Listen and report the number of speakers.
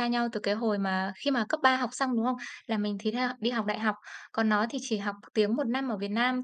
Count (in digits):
1